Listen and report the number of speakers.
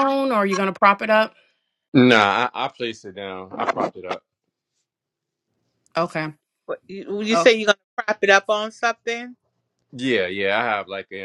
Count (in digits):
3